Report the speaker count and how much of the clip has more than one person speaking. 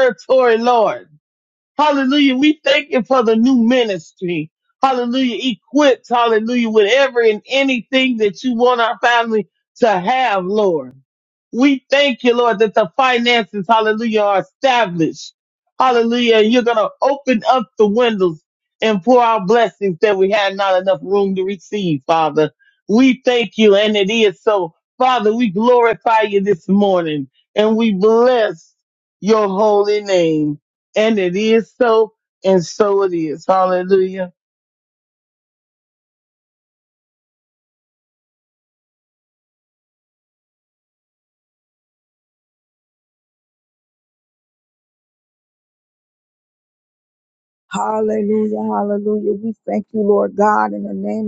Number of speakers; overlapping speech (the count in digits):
2, no overlap